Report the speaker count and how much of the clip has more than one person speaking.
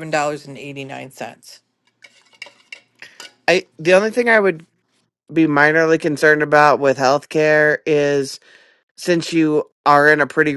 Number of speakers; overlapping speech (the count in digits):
2, no overlap